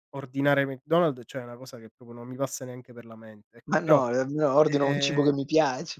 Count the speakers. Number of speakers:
2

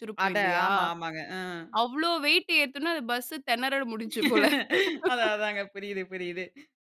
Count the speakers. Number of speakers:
2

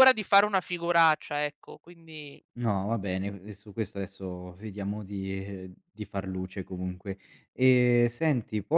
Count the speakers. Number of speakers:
2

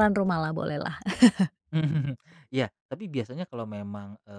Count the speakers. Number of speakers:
2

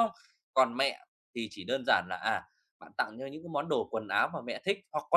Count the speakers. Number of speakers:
1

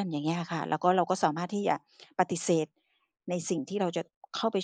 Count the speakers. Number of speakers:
1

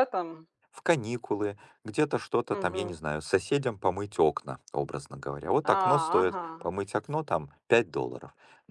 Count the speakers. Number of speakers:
2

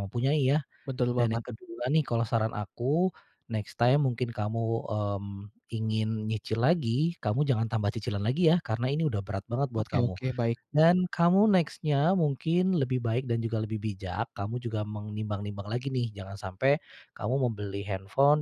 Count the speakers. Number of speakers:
2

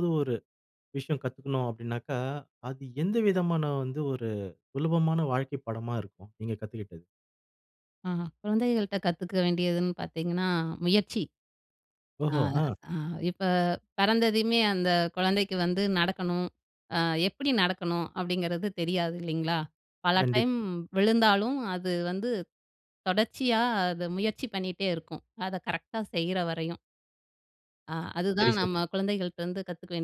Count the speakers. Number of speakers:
2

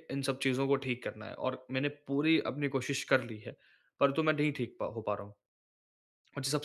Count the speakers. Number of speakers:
1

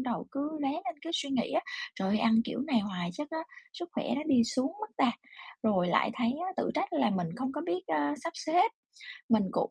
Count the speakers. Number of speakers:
1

